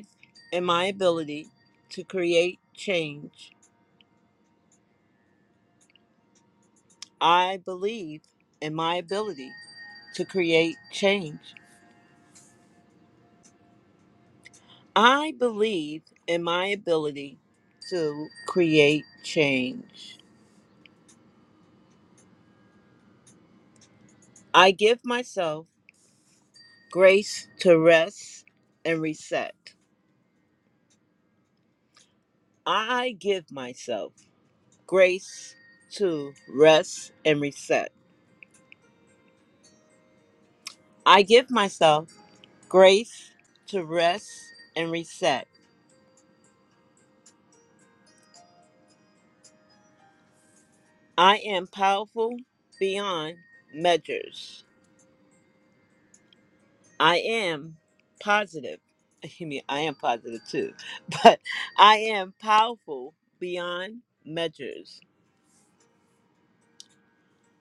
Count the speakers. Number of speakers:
1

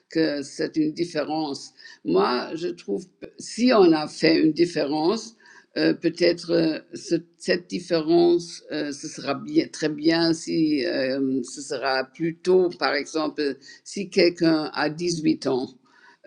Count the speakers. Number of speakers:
1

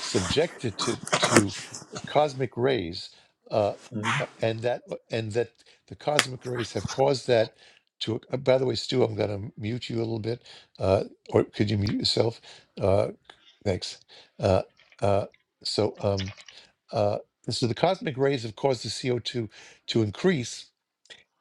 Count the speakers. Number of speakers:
1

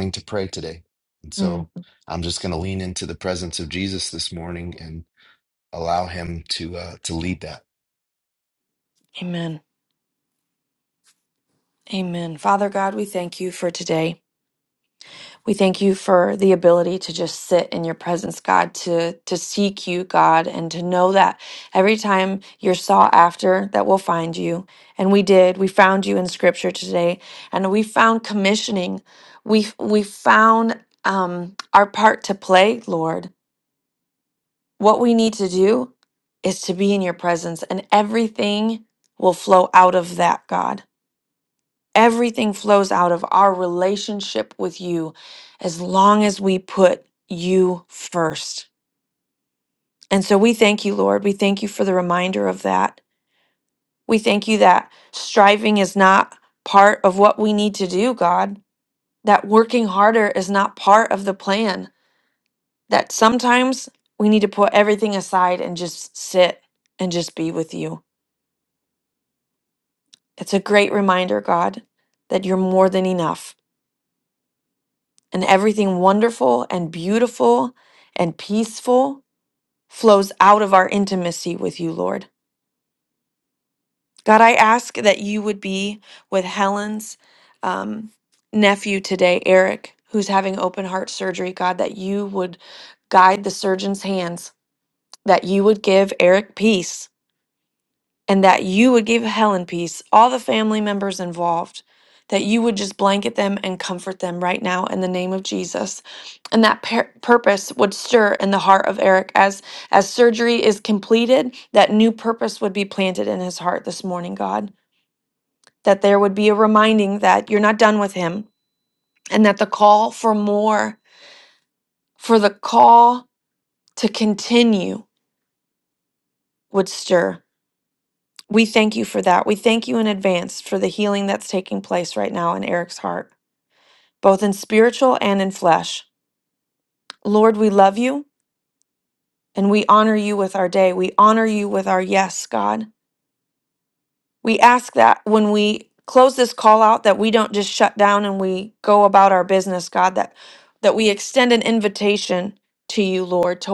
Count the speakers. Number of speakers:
2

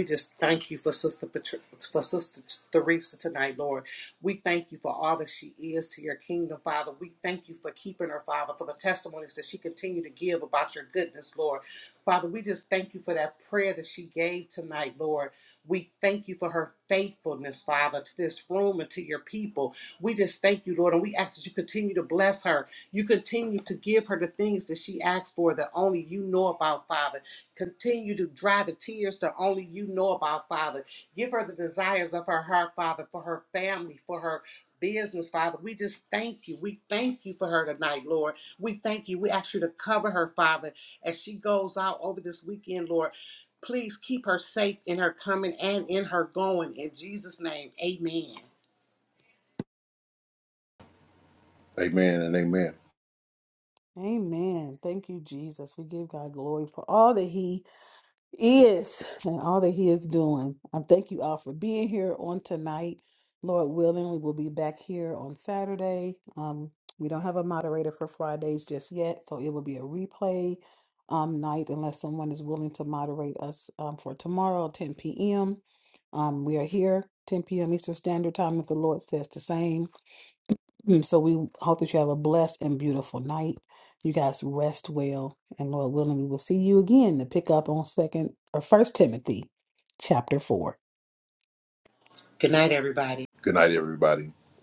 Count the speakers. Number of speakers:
3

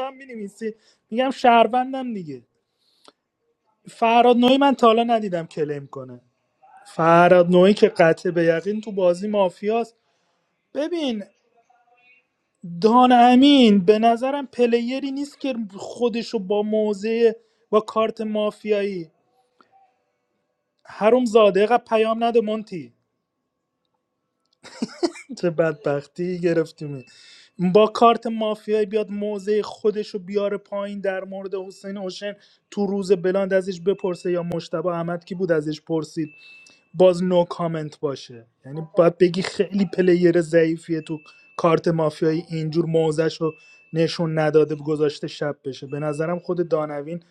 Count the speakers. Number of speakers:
1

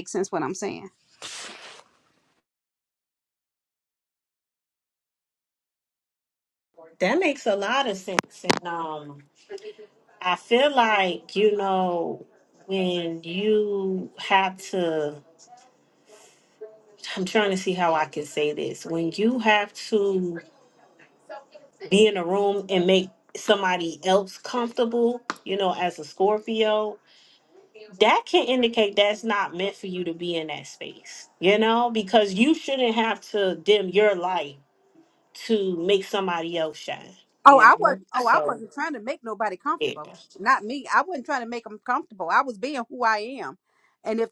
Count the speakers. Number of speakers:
2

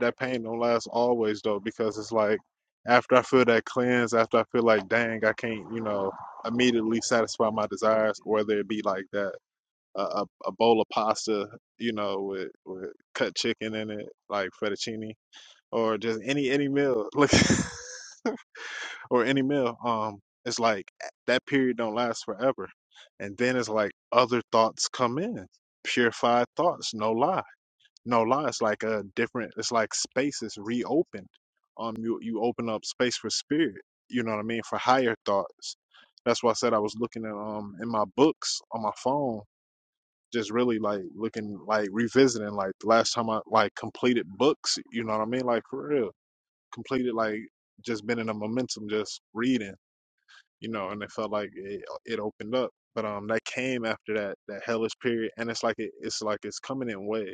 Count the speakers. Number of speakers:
1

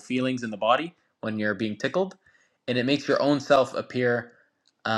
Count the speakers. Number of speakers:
1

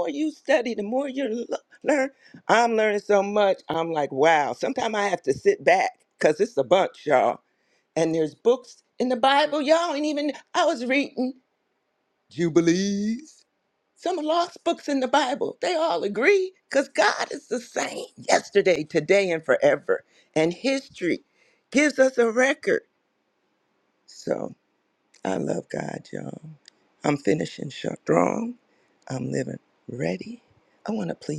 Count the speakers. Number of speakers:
1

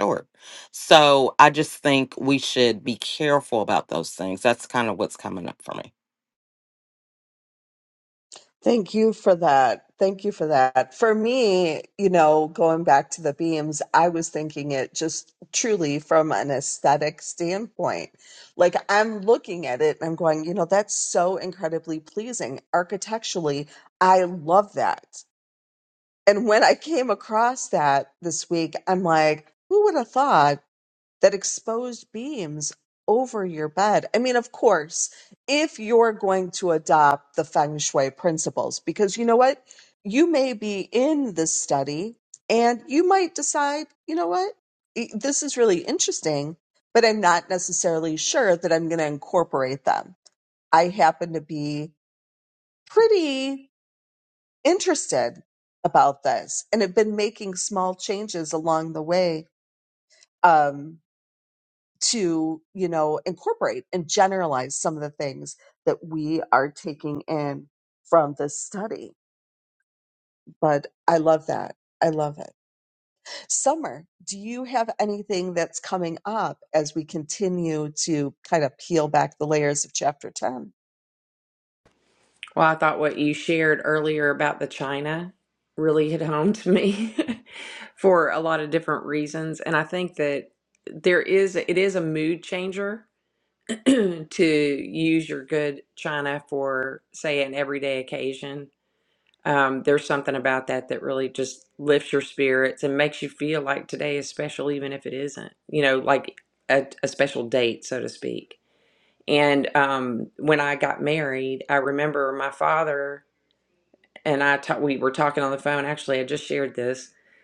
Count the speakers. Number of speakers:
3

